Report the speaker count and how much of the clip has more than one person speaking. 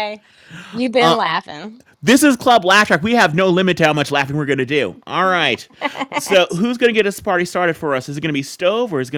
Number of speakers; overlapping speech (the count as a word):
two, no overlap